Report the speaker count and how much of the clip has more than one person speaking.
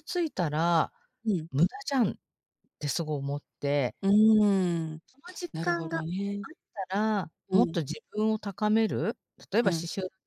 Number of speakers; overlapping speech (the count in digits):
2, about 10%